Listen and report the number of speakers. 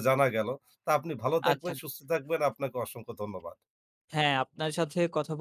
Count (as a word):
two